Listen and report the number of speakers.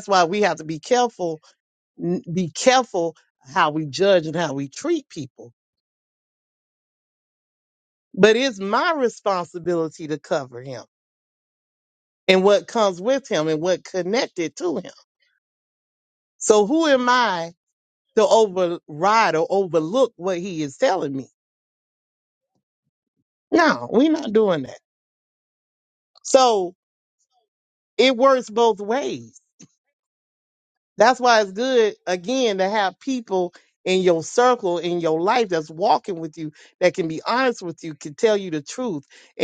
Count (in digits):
1